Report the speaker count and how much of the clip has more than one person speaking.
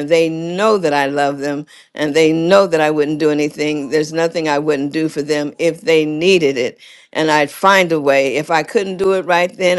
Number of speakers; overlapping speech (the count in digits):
1, no overlap